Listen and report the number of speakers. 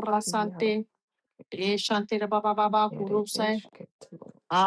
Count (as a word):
two